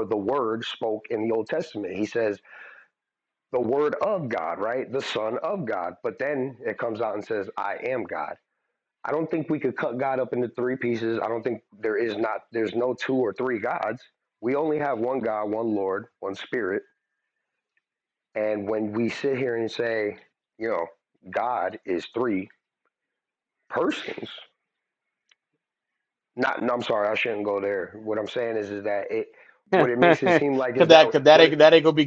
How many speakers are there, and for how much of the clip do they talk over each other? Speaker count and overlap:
two, about 3%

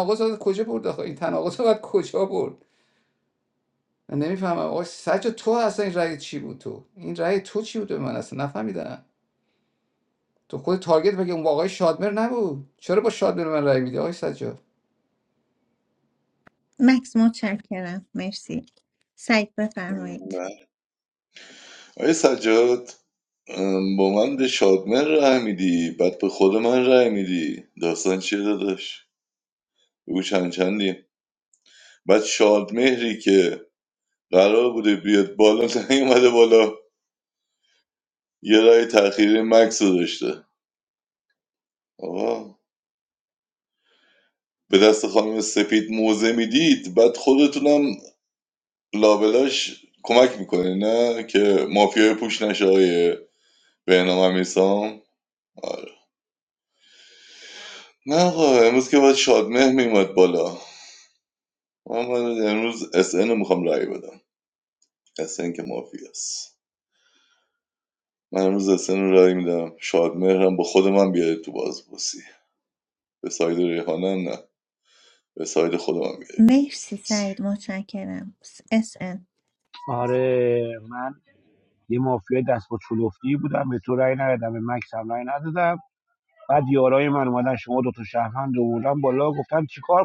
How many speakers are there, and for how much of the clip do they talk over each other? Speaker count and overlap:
four, under 1%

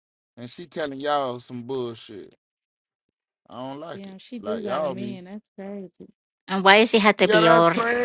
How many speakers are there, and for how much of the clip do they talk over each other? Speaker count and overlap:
three, about 17%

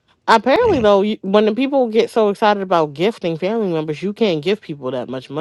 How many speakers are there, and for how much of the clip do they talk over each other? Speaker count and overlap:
one, no overlap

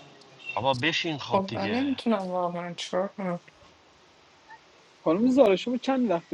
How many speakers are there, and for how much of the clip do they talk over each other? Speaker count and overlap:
three, about 10%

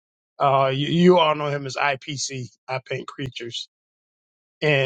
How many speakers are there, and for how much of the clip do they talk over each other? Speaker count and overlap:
one, no overlap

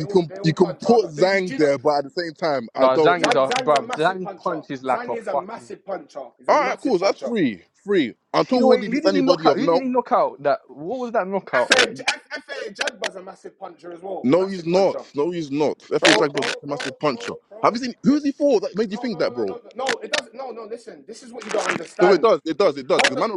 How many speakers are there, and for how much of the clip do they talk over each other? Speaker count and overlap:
three, about 48%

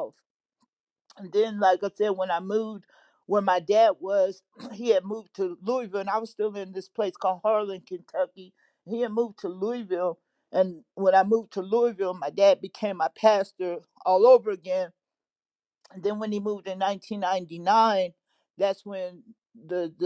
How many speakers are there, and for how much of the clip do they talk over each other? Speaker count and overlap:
one, no overlap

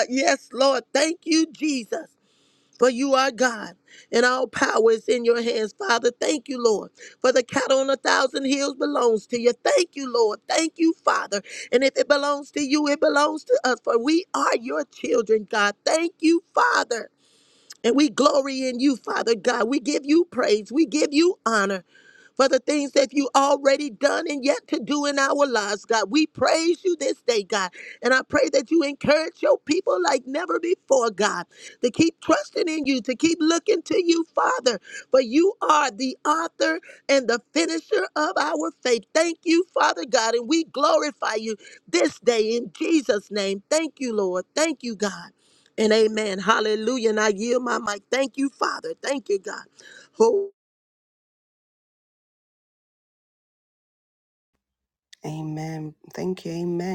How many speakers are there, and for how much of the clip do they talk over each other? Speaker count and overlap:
two, no overlap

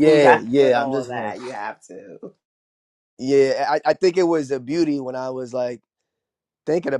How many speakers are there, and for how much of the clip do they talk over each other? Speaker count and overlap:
two, about 19%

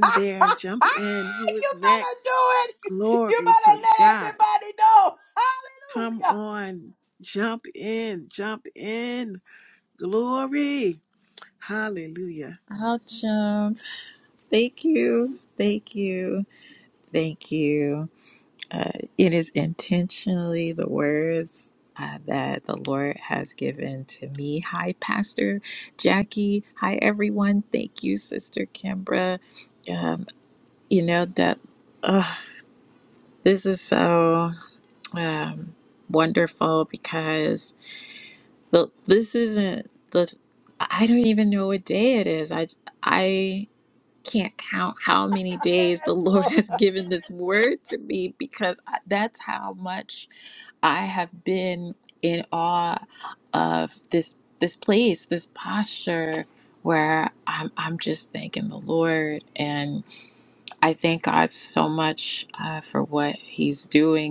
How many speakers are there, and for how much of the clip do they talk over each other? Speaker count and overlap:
three, about 5%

